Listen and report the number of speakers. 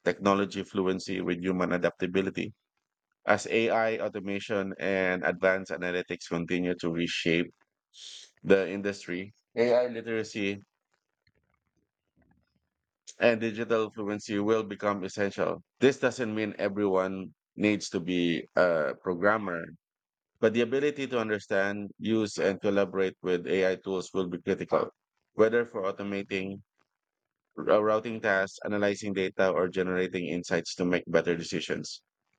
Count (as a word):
one